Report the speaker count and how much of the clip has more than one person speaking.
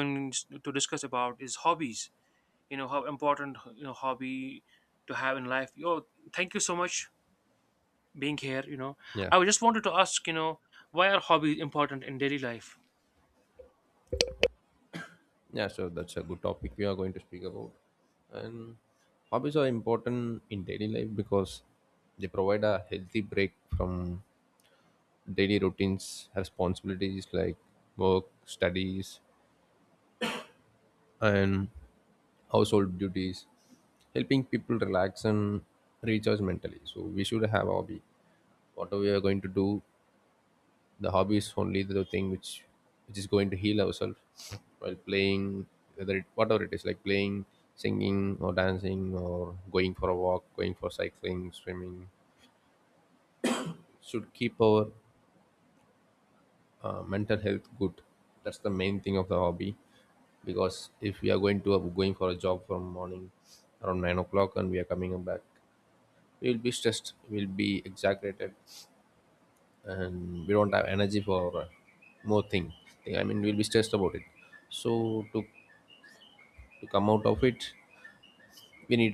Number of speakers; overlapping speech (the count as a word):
two, under 1%